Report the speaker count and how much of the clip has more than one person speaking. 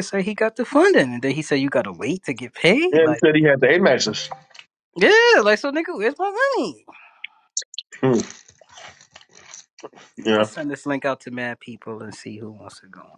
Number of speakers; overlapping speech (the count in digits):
2, about 4%